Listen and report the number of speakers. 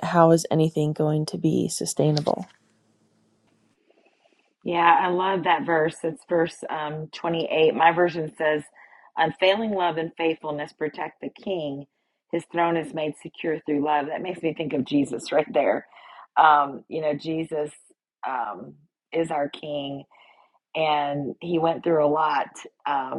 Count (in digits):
2